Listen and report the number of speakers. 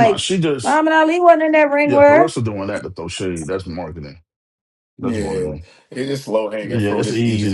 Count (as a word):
three